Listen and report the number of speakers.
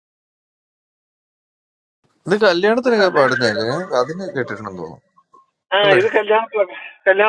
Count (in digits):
2